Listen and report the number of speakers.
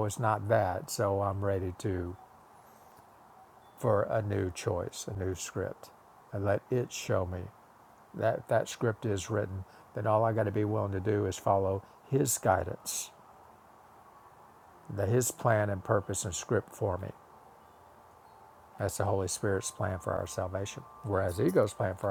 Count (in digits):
1